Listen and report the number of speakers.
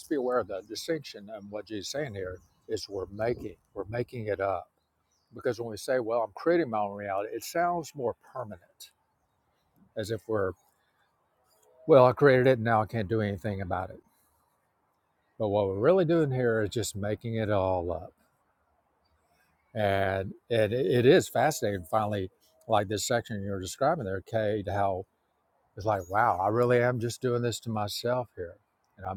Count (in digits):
1